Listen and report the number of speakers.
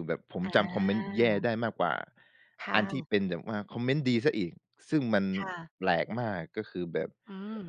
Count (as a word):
two